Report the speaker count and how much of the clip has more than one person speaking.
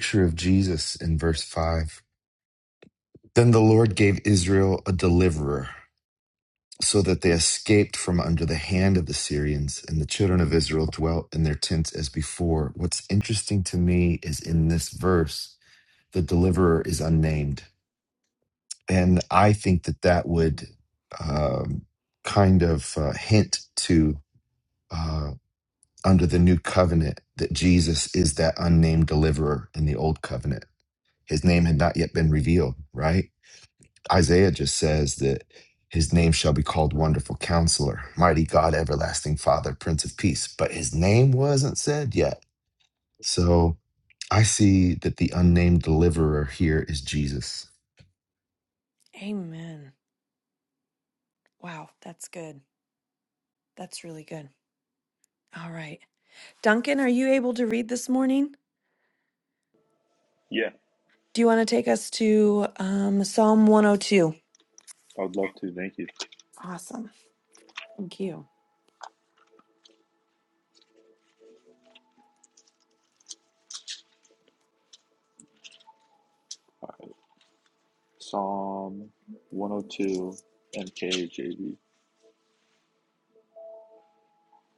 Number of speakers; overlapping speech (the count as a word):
three, no overlap